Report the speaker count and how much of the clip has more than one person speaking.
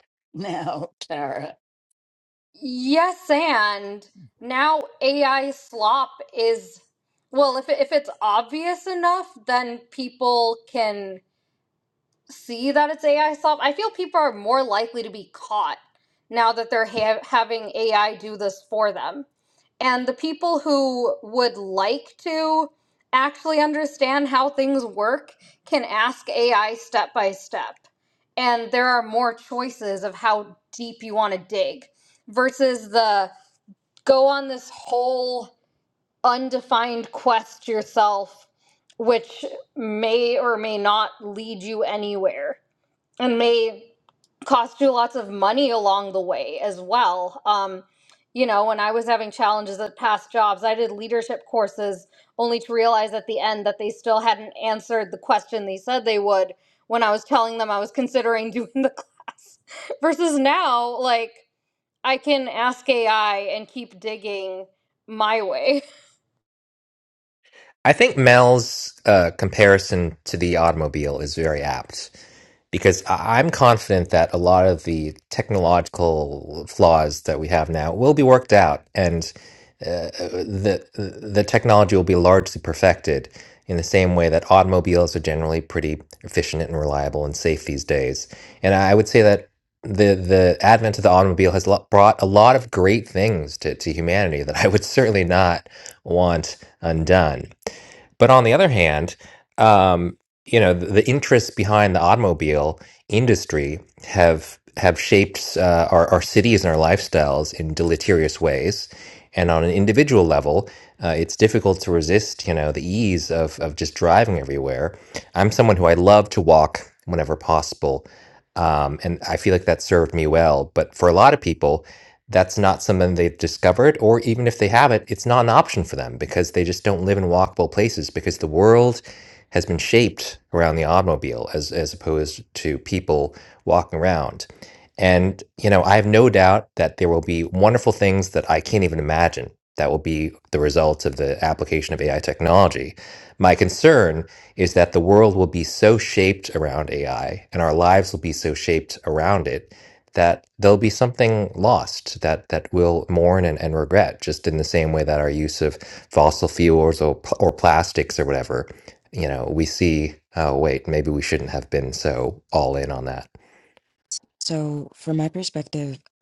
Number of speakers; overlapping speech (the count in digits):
4, no overlap